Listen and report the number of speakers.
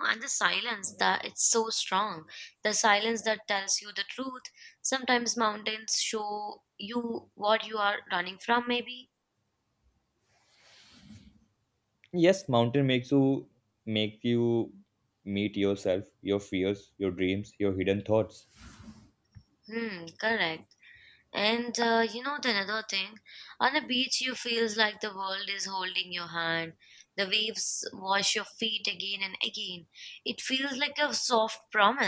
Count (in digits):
2